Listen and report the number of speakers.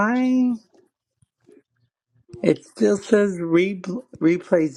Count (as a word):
one